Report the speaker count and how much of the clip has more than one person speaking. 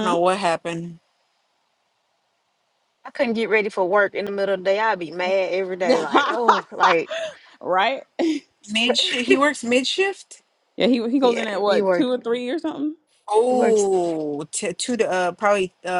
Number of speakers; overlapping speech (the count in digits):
3, about 8%